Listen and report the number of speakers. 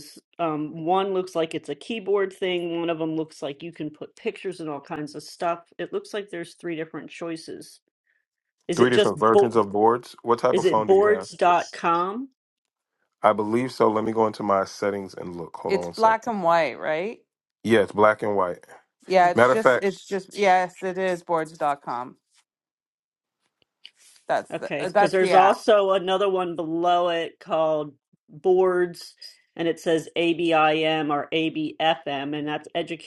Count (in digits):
3